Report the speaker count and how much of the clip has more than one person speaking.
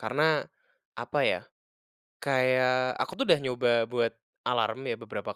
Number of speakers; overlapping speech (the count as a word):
one, no overlap